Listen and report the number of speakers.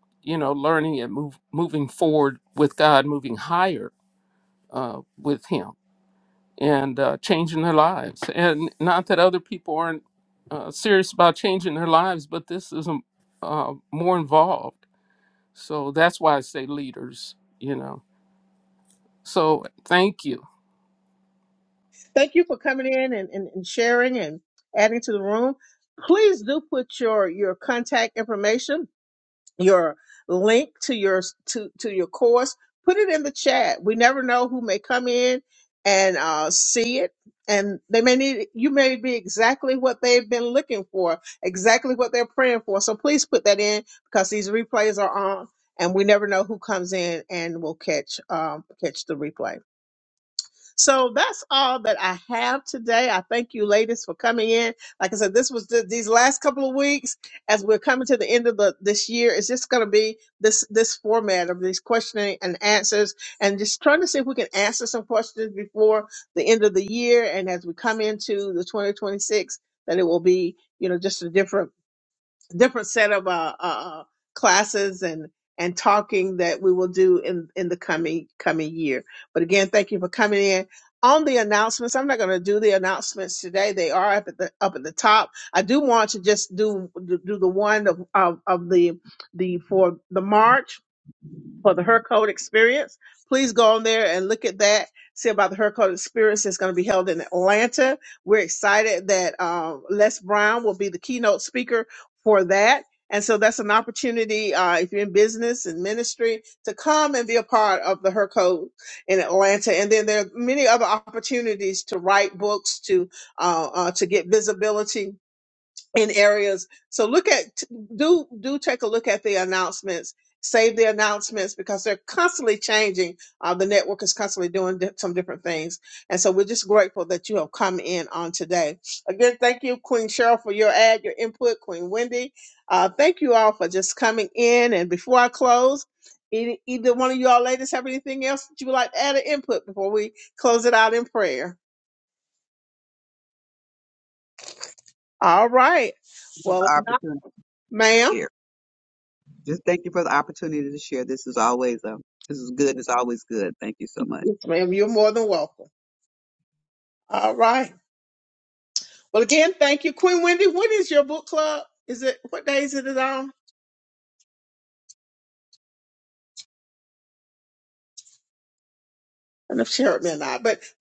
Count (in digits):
3